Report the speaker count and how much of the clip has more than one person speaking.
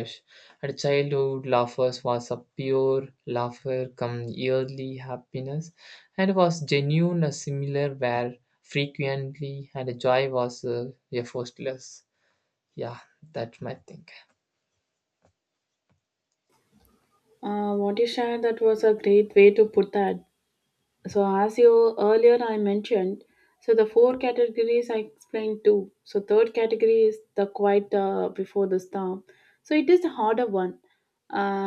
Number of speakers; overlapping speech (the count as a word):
two, no overlap